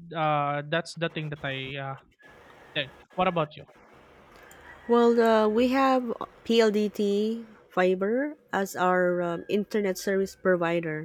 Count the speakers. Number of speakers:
two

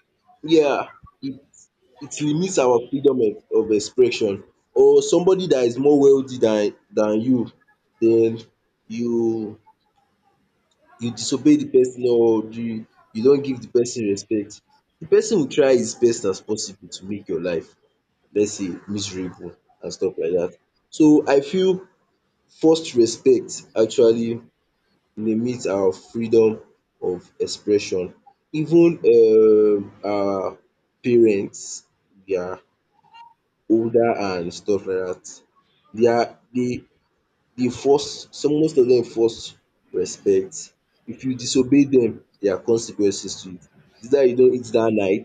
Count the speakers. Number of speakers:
one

